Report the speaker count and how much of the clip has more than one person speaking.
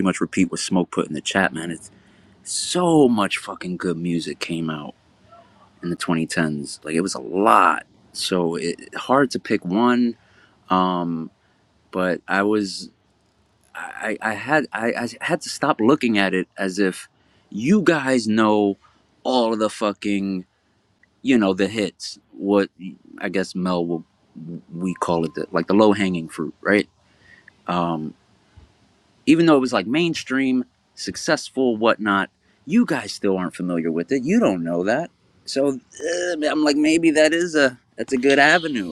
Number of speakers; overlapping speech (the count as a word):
one, no overlap